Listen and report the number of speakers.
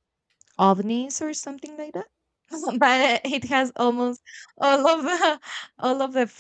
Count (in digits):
1